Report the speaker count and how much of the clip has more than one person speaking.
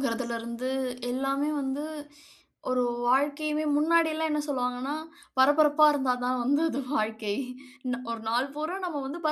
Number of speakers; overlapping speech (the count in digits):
1, no overlap